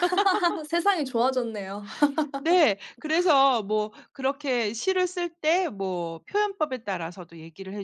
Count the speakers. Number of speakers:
2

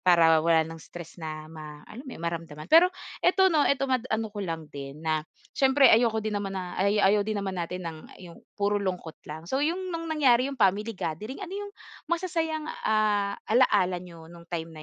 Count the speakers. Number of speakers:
1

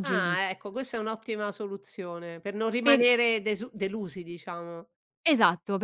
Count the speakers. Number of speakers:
2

